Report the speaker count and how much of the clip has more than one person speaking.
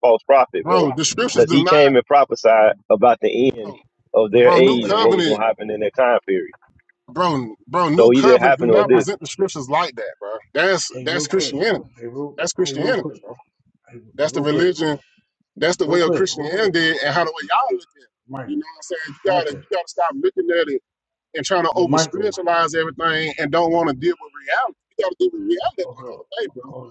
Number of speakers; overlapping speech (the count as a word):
three, about 27%